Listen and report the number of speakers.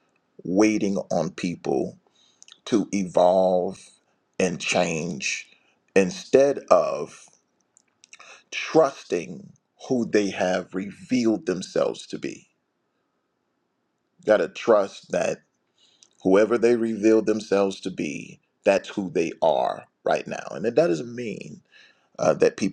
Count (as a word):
one